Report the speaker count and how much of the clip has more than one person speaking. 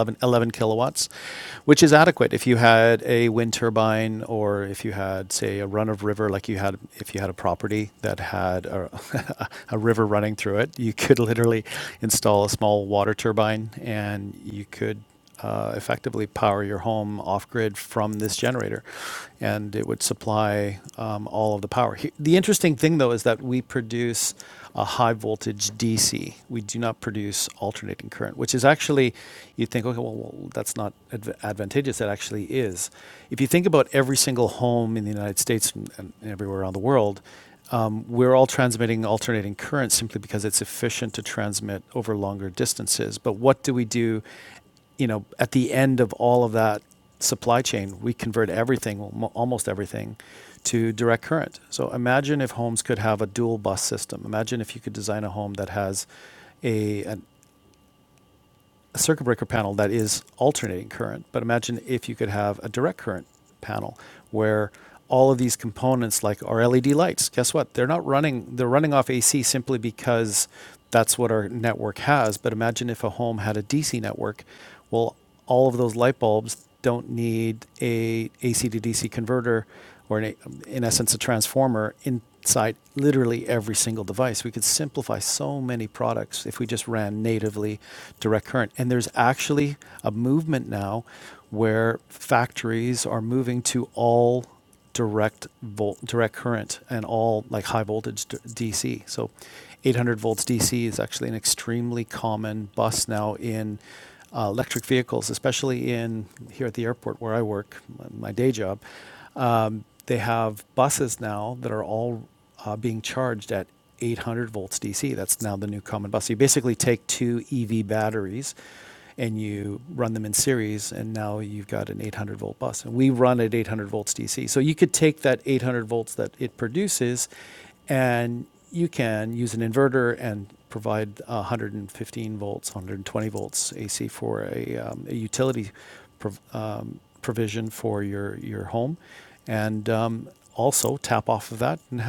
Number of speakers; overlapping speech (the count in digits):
1, no overlap